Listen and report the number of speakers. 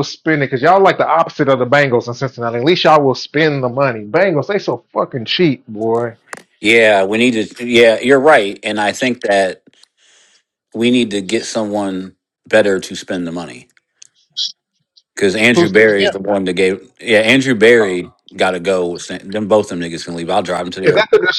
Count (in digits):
2